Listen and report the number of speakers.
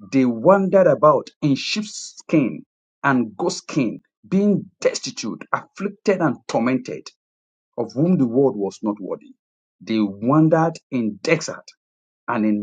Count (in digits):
1